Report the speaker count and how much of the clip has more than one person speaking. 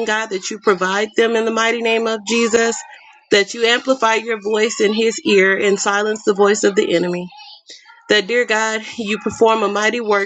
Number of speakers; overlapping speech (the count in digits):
1, no overlap